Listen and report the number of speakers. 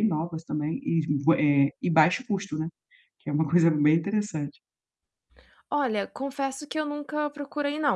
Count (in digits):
2